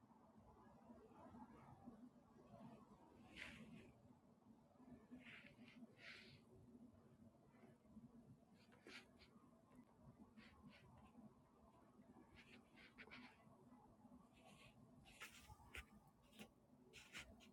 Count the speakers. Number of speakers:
0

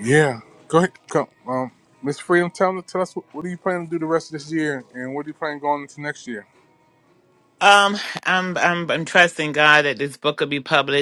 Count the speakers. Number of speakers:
2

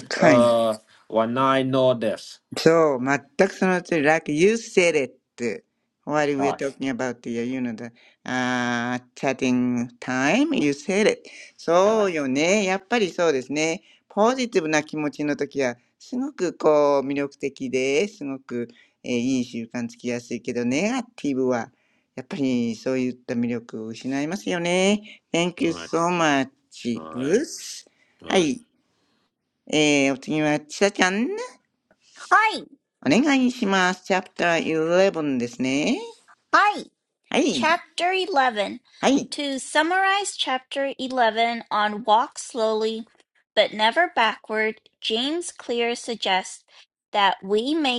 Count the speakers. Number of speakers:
3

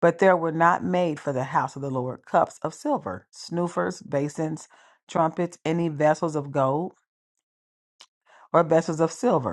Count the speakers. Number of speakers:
1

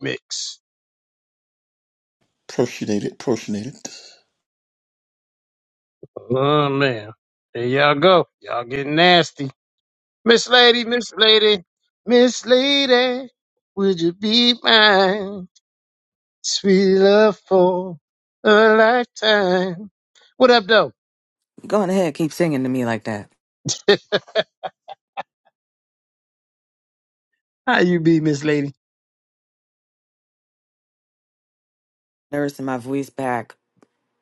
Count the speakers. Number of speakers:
3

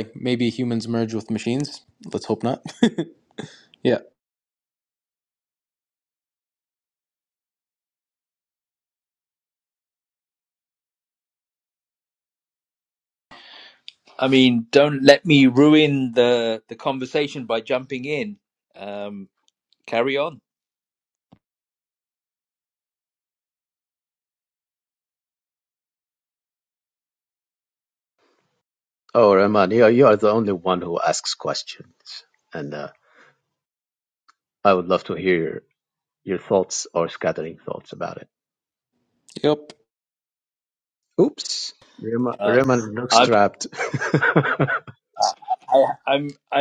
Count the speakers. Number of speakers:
3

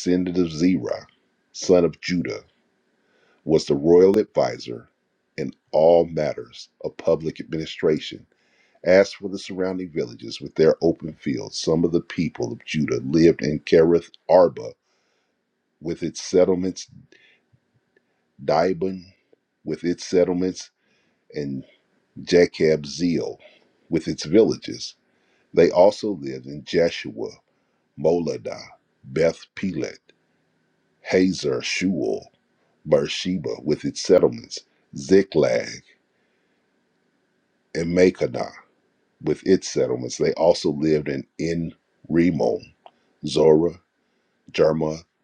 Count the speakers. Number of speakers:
1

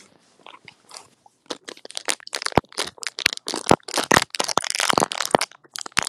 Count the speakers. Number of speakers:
0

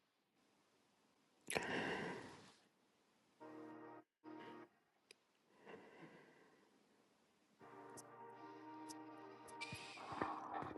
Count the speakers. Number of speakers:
0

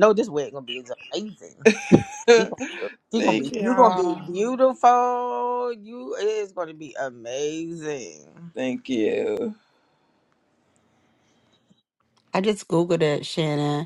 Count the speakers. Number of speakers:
3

